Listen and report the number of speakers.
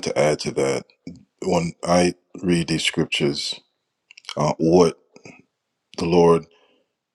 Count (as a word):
one